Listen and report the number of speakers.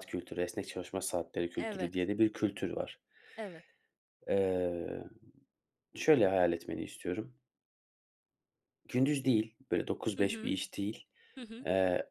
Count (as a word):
two